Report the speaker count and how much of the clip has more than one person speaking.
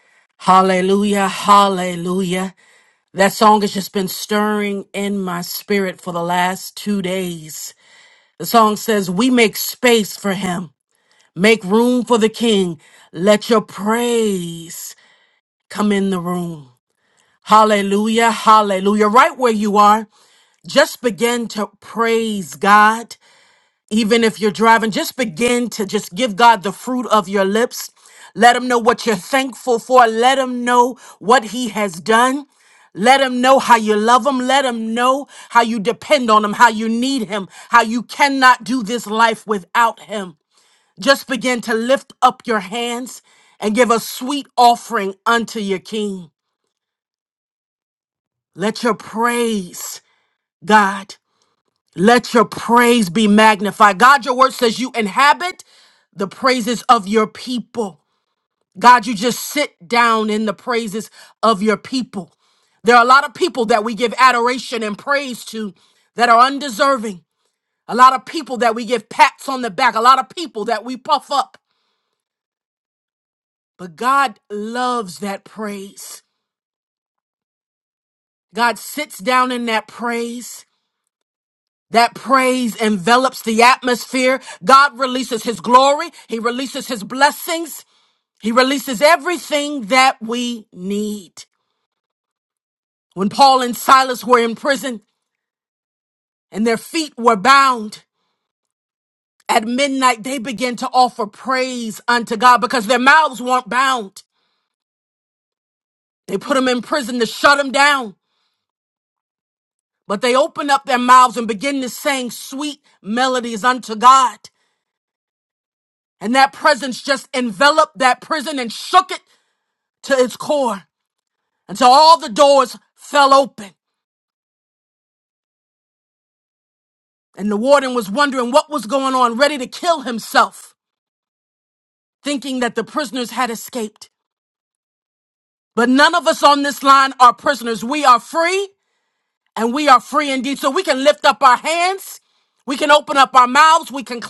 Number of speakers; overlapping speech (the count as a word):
one, no overlap